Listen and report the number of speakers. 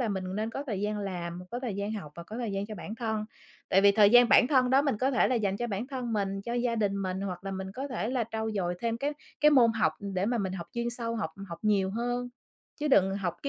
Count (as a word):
one